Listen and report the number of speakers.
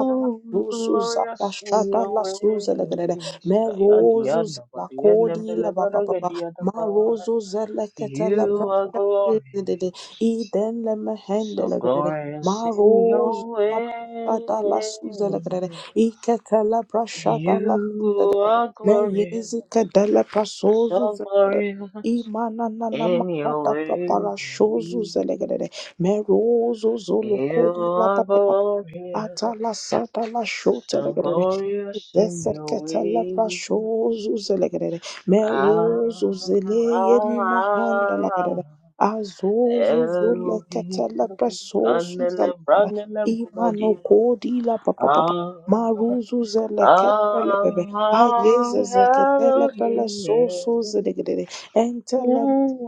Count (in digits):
2